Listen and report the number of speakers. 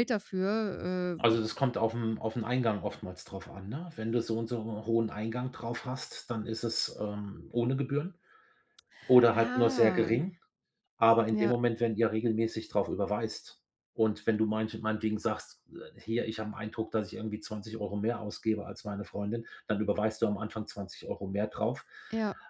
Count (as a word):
two